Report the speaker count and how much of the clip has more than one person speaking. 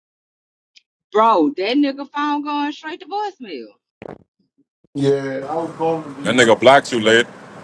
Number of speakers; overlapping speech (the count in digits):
3, about 4%